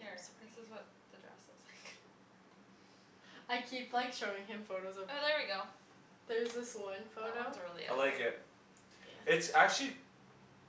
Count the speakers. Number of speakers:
three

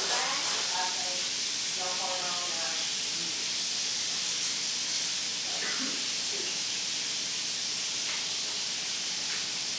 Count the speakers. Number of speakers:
one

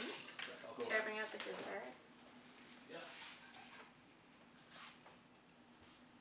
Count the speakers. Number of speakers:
two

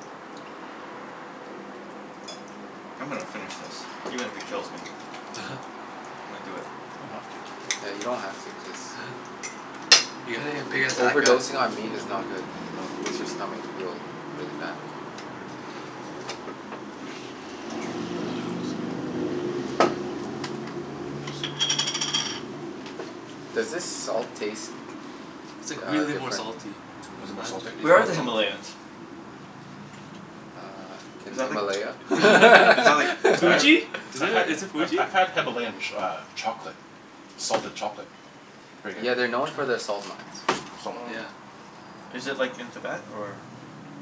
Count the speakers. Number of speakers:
four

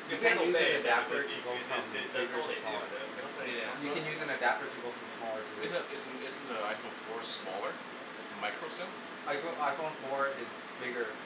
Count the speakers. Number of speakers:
three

